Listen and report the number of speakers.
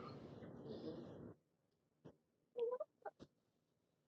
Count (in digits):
0